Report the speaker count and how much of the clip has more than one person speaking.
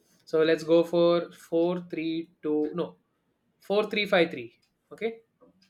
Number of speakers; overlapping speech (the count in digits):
1, no overlap